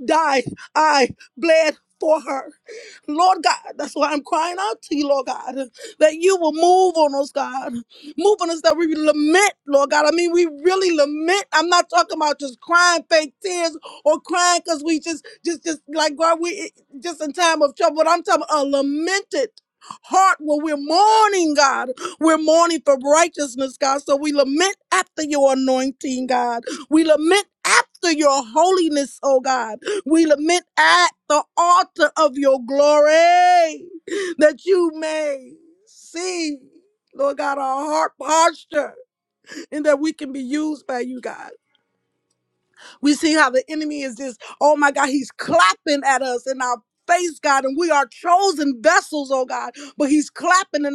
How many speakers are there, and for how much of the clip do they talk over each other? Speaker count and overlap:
1, no overlap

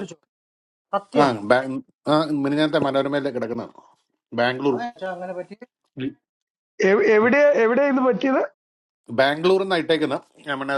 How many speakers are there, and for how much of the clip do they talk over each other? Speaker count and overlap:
3, about 3%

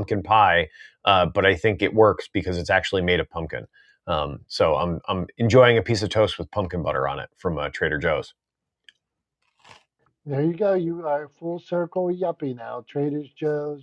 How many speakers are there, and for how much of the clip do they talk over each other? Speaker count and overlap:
2, no overlap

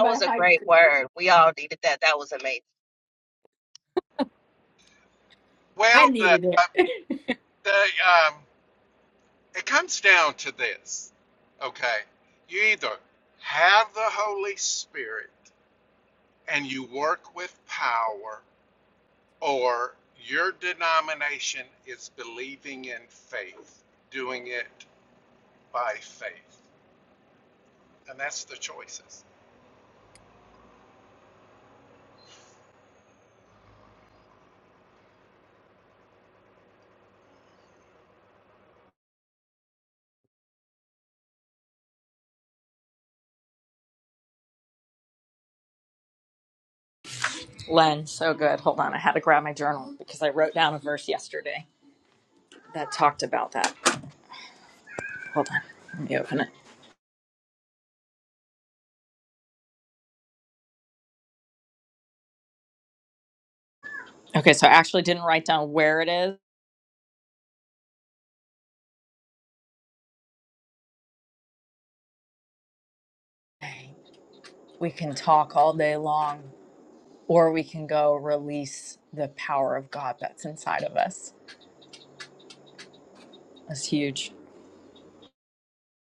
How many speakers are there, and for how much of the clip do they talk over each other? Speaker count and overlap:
4, about 2%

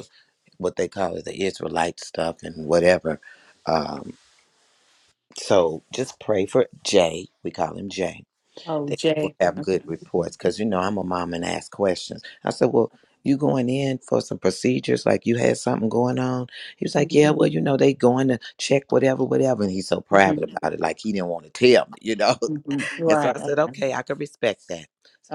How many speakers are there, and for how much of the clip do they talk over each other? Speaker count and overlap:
2, about 6%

